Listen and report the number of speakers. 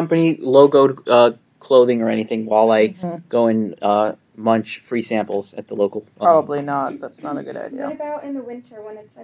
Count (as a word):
three